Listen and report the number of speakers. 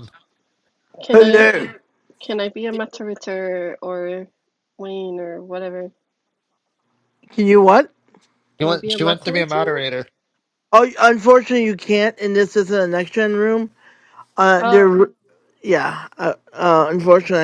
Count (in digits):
3